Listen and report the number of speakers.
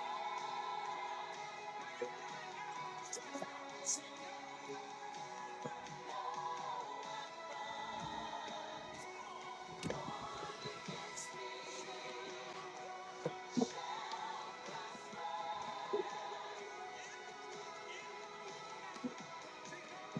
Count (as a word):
zero